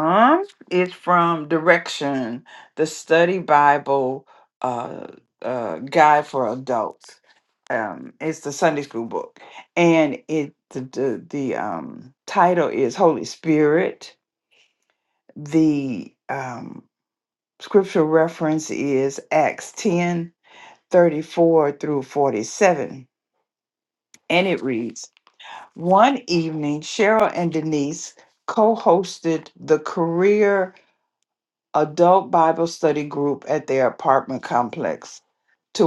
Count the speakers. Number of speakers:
one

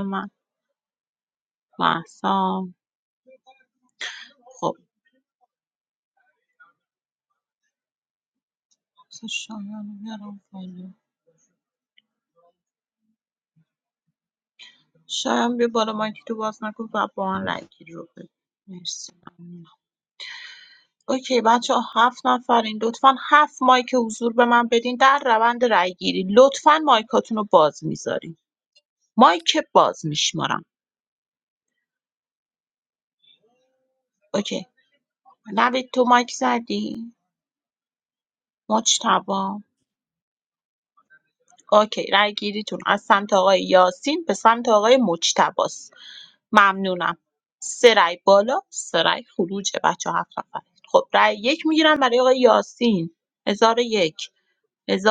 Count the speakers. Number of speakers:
one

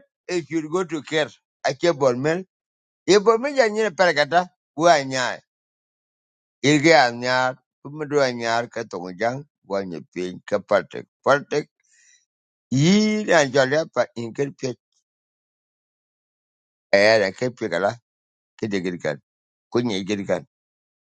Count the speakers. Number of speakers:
one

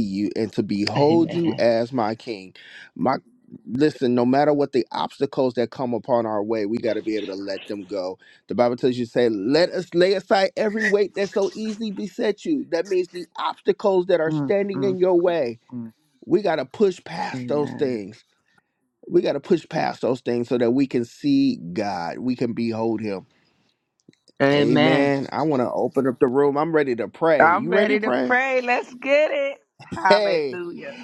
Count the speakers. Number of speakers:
two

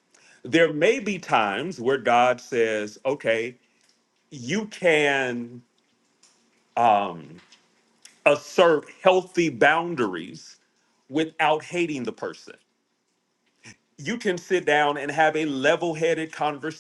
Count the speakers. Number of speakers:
one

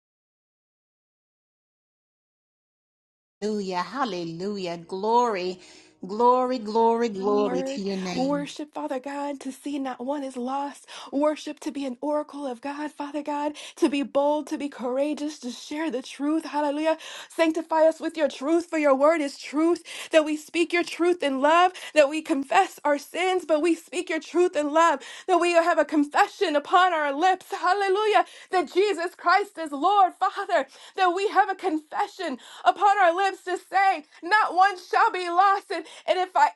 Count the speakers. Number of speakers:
two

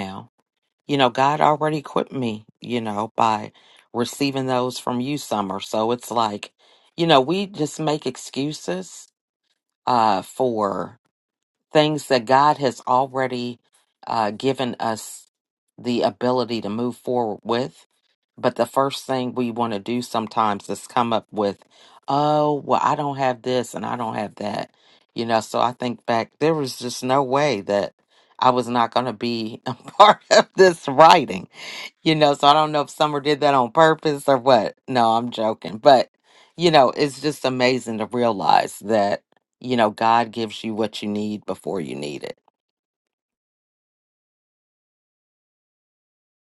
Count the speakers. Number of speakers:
one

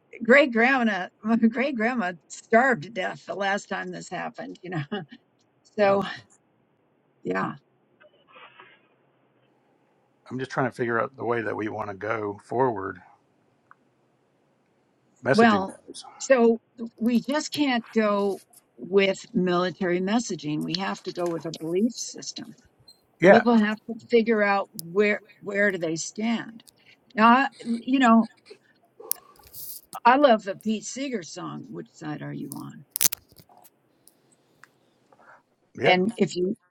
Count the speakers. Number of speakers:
two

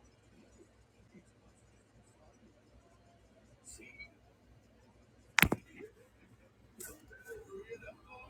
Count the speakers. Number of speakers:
zero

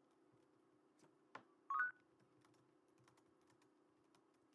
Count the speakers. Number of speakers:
zero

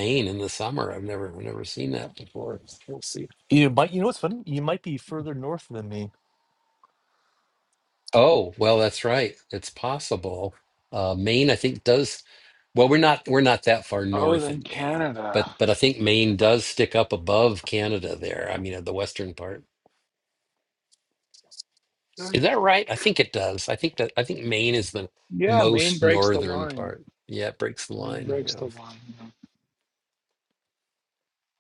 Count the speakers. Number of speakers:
three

